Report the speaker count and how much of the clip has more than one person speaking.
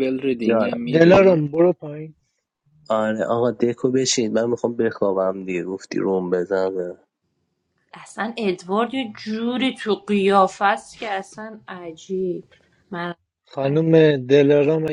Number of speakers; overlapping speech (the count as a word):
four, about 5%